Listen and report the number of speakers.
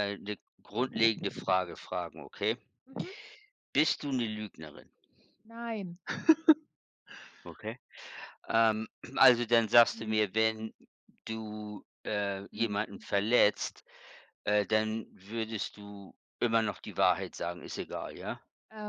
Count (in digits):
2